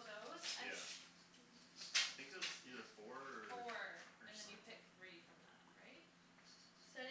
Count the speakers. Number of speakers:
3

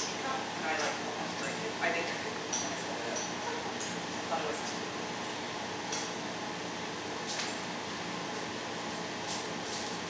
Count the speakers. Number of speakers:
1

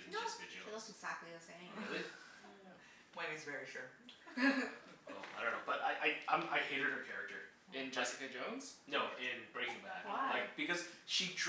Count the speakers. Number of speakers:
4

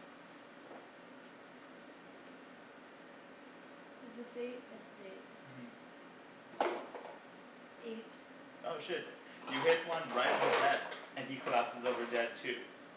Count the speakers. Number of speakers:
2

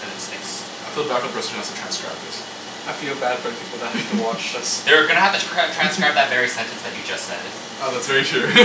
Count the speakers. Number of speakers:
3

